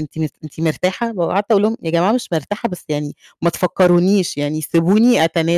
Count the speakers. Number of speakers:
1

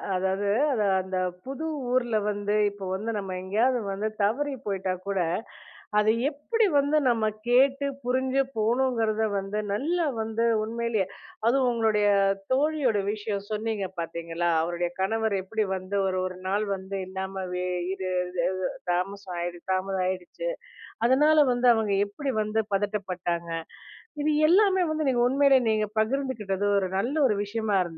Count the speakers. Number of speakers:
1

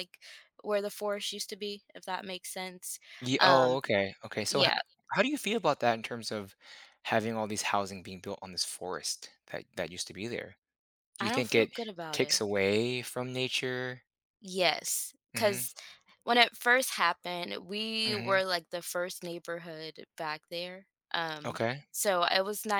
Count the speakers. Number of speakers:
2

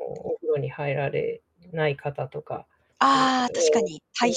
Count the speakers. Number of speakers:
2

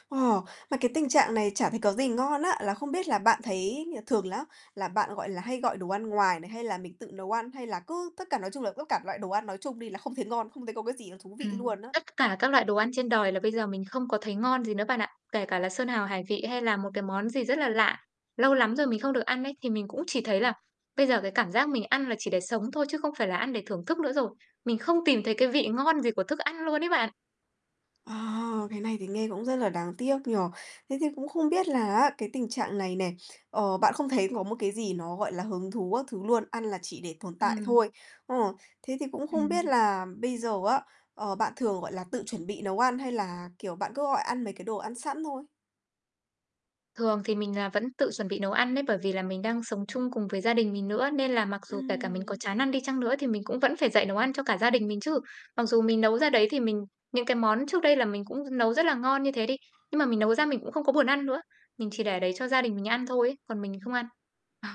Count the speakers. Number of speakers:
2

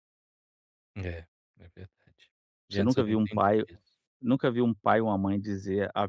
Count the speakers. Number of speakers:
2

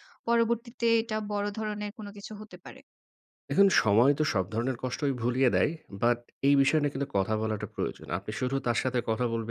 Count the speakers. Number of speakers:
2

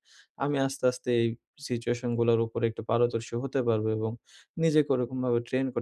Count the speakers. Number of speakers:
1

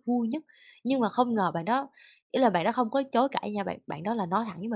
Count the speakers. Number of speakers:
1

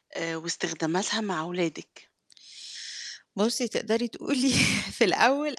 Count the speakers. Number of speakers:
2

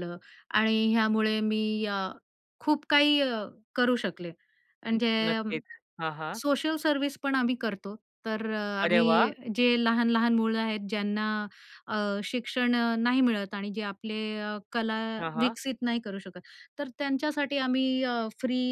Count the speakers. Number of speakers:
2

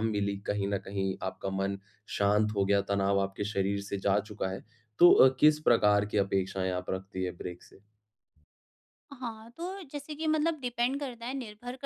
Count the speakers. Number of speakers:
2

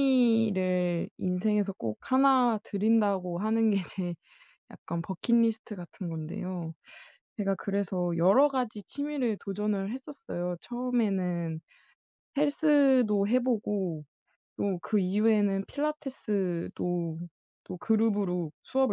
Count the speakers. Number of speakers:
1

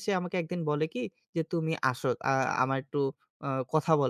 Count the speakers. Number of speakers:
1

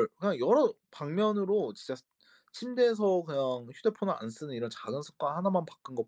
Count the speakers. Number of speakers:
1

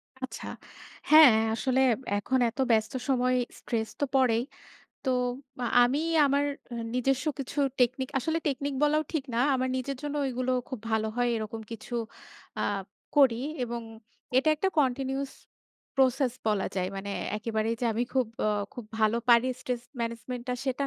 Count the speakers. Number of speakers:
1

